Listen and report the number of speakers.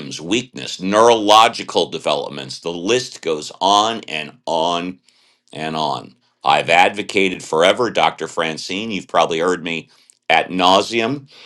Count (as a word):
one